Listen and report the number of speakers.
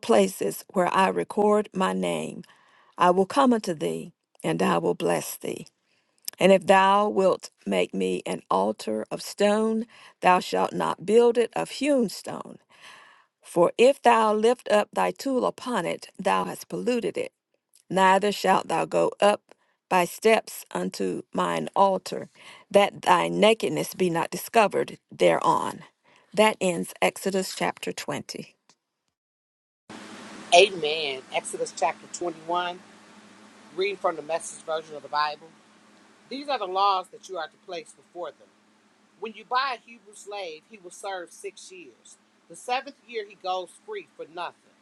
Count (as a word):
two